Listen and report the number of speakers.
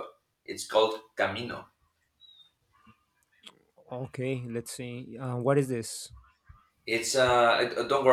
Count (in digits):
2